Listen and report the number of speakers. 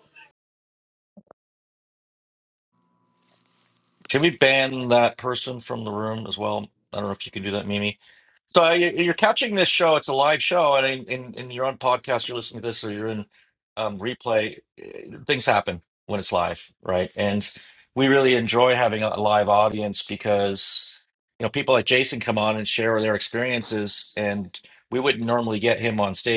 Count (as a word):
one